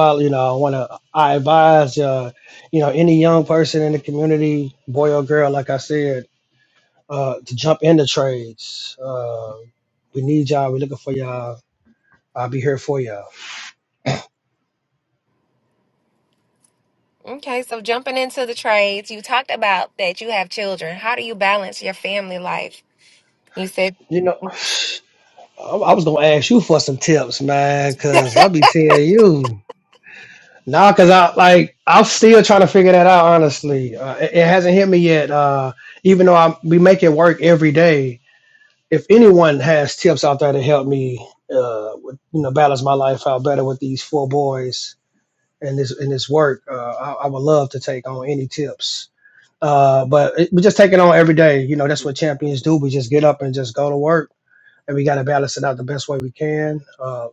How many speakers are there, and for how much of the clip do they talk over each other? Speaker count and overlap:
two, no overlap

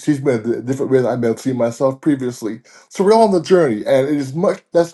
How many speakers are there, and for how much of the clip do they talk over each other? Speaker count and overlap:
one, no overlap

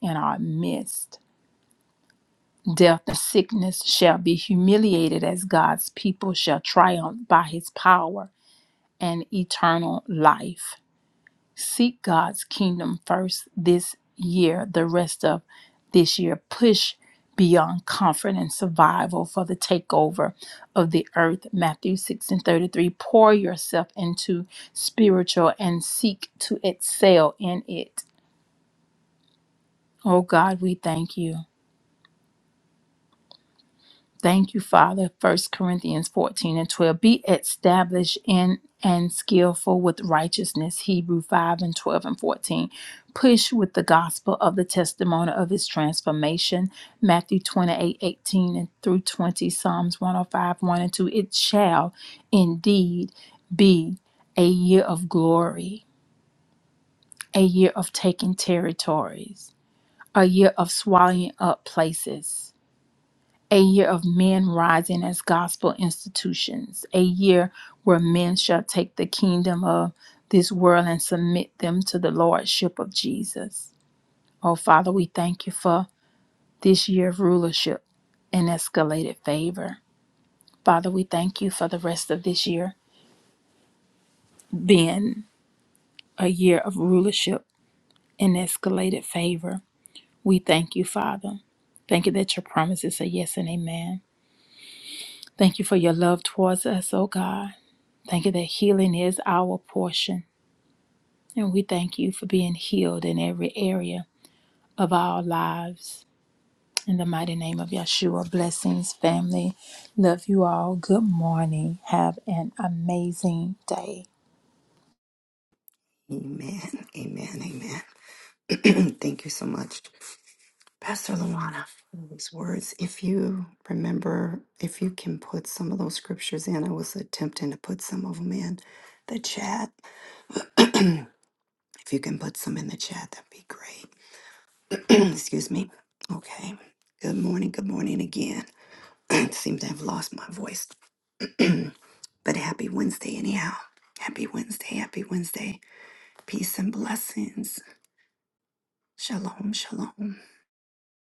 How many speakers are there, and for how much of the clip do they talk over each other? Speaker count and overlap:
two, no overlap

